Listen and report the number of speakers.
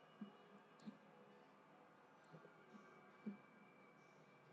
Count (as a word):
zero